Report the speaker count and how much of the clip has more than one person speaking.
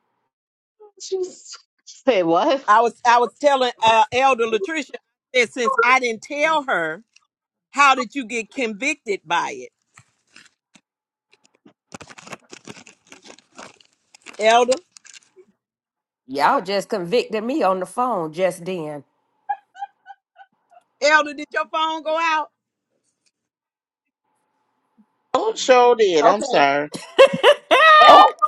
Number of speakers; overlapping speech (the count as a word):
four, about 2%